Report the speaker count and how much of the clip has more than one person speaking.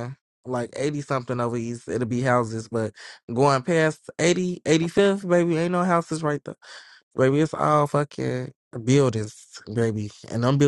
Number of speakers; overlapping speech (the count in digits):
1, no overlap